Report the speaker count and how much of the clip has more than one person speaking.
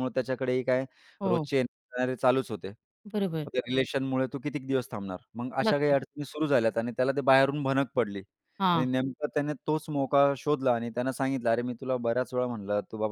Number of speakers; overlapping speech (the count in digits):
2, about 5%